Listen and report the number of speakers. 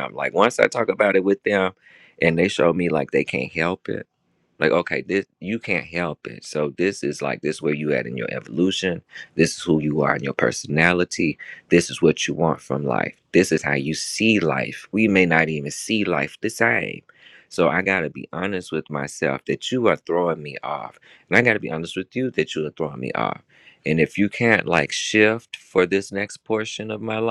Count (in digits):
1